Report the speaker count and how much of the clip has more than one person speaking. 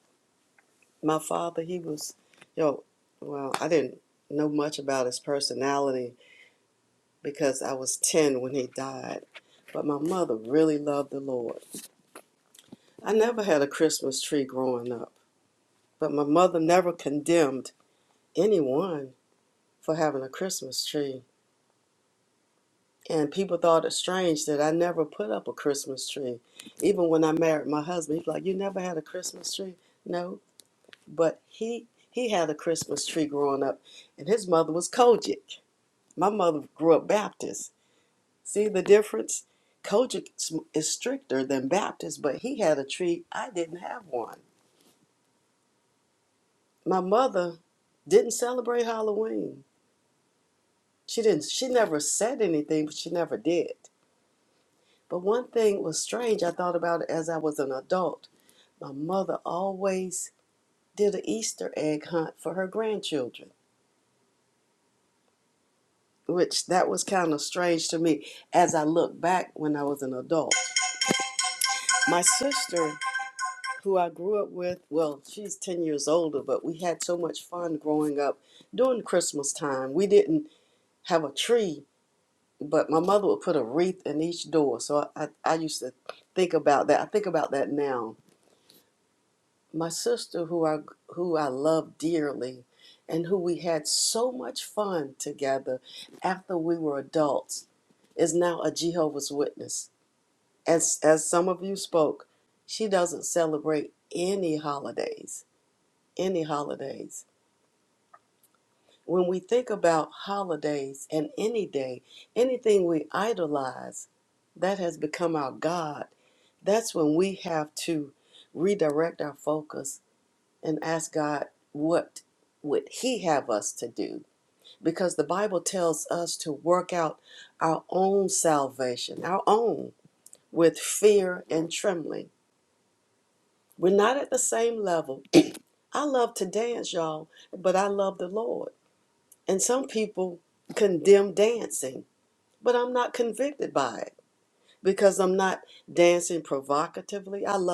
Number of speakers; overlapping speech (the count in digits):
1, no overlap